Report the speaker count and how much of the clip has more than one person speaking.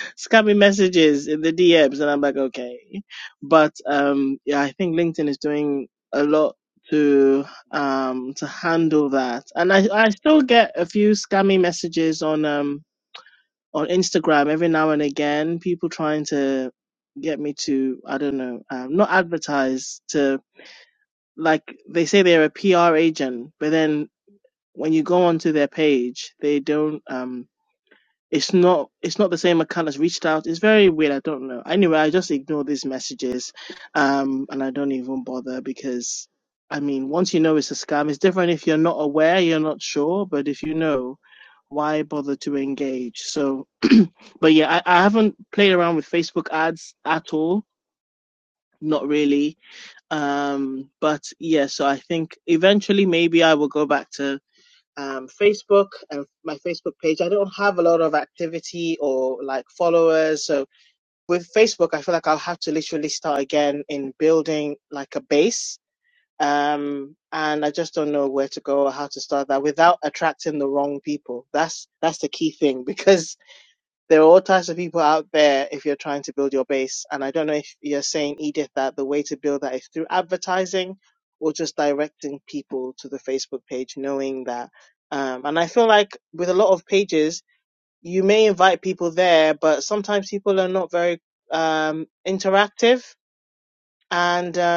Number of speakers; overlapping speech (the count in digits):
1, no overlap